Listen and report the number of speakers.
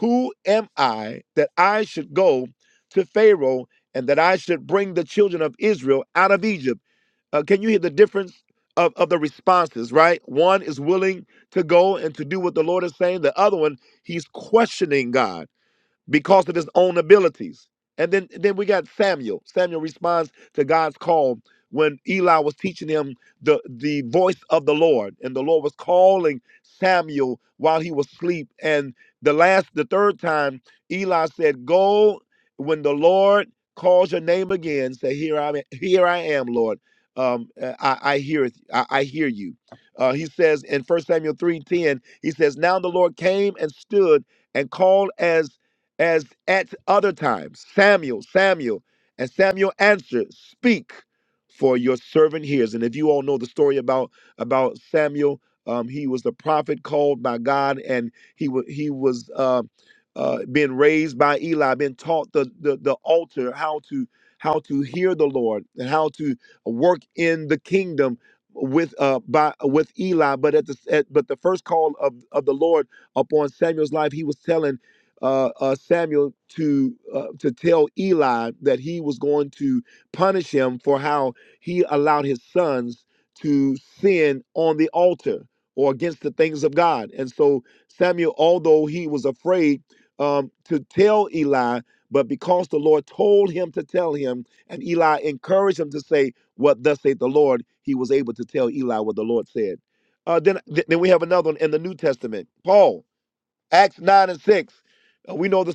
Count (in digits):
1